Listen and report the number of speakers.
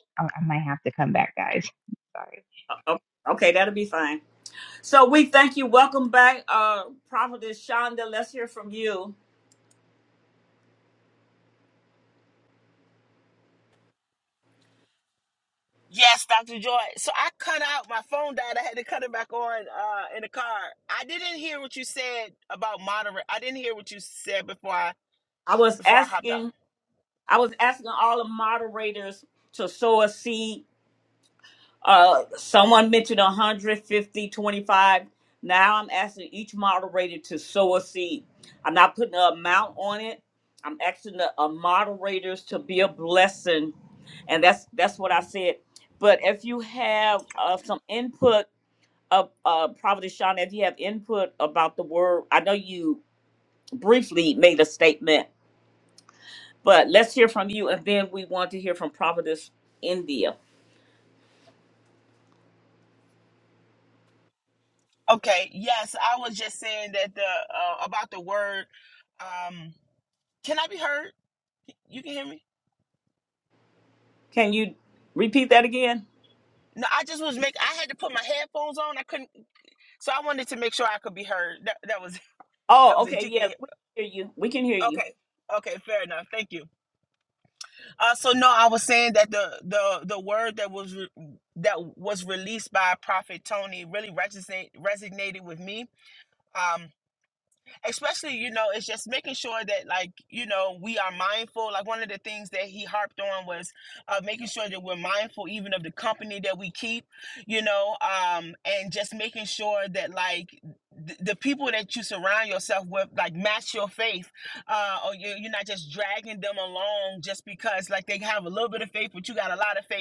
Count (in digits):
3